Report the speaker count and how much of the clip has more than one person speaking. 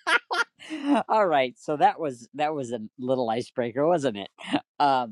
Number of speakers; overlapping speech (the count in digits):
1, no overlap